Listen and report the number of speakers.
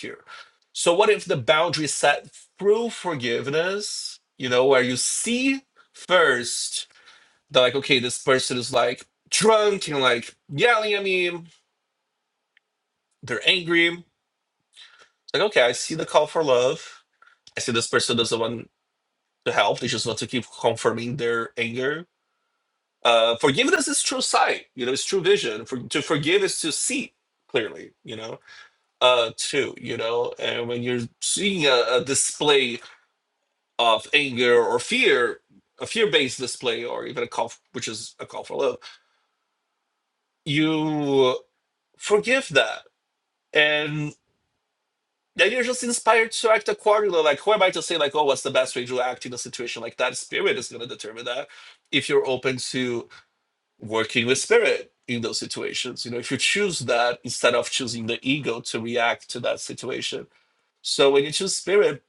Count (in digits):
1